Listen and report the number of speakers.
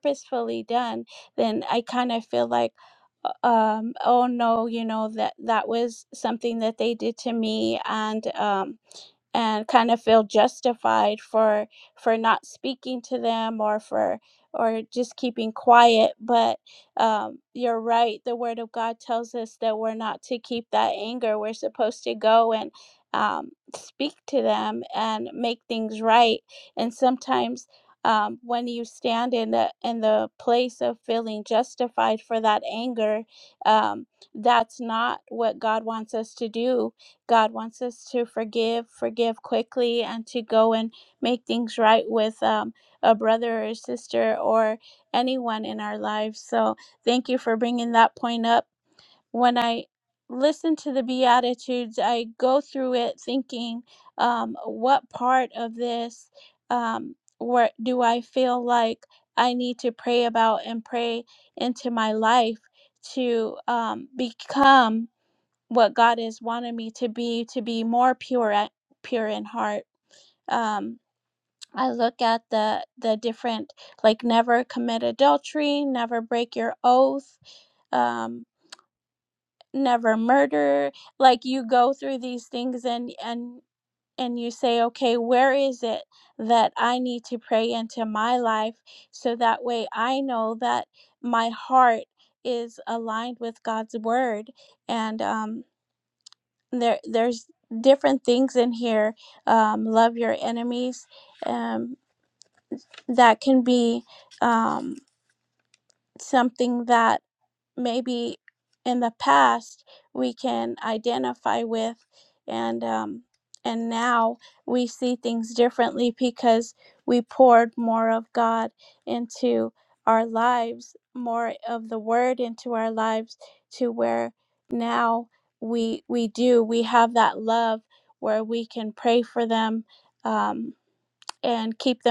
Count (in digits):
1